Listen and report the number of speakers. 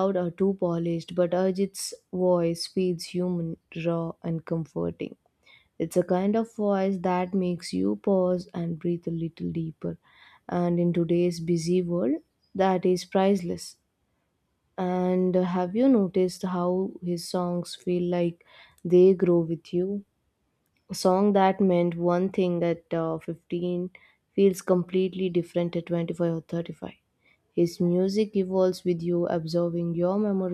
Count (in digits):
1